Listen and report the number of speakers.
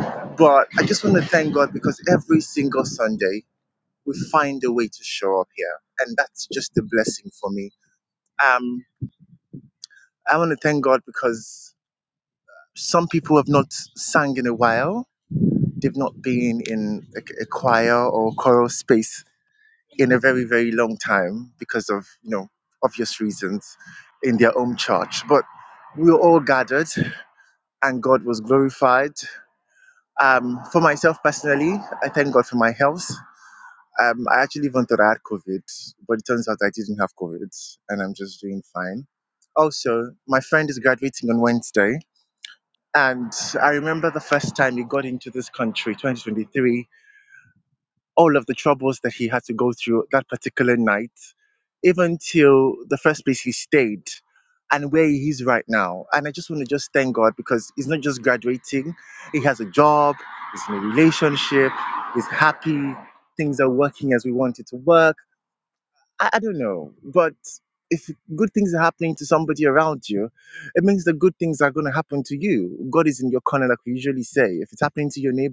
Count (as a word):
one